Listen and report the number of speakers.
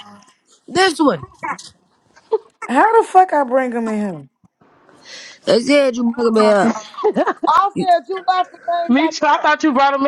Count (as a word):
four